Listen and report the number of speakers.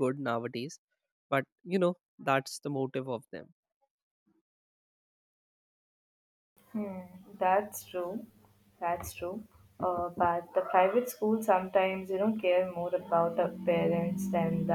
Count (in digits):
2